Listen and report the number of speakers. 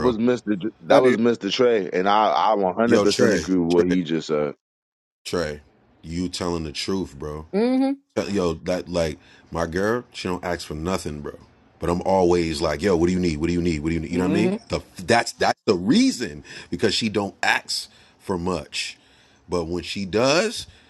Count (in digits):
3